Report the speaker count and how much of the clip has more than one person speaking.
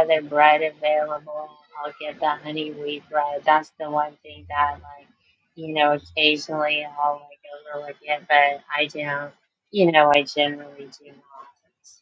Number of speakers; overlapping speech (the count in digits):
1, no overlap